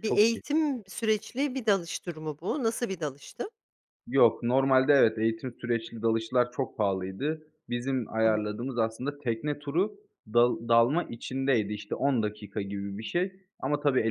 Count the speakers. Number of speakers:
2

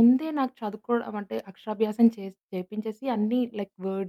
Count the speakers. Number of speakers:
1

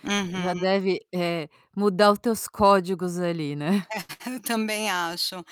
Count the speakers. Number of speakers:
2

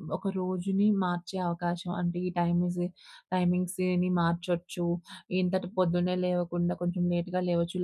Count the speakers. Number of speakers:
1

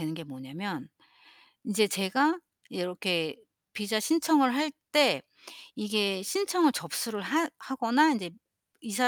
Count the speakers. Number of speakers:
1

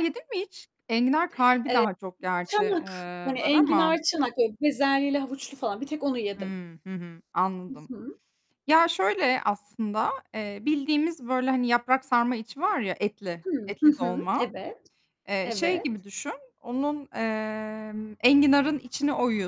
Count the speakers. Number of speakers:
2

